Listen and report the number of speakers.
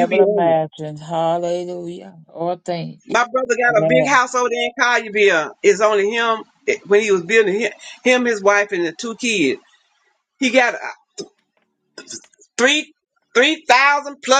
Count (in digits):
2